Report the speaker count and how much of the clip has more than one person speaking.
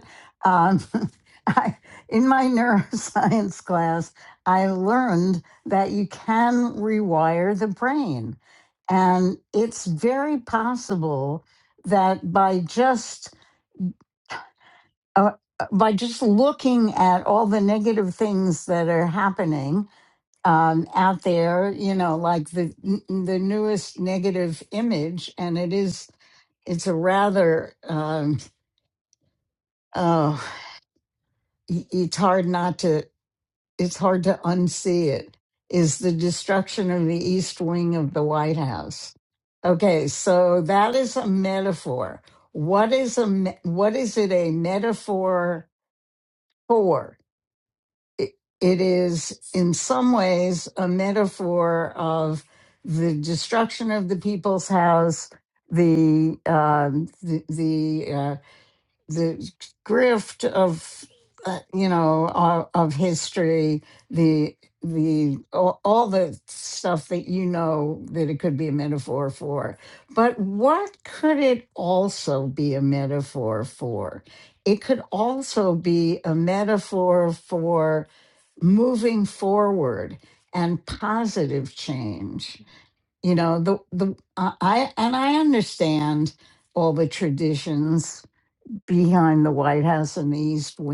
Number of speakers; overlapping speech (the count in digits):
1, no overlap